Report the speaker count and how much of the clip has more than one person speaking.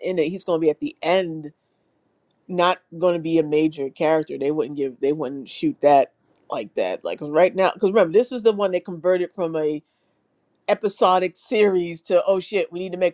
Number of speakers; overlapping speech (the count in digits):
1, no overlap